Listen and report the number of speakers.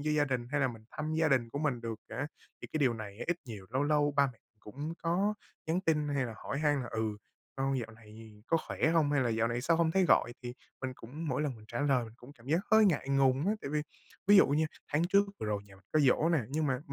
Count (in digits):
1